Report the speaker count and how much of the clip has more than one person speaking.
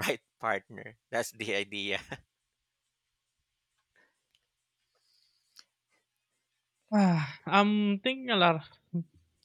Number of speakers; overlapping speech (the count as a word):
two, no overlap